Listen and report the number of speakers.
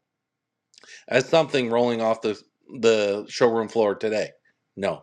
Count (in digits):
1